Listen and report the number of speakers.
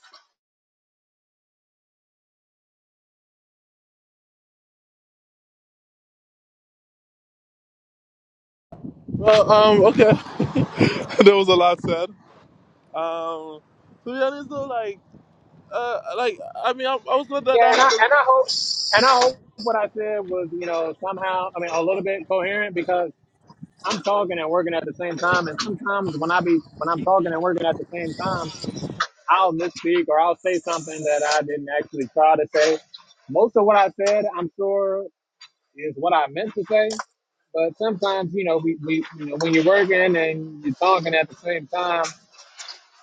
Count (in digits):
2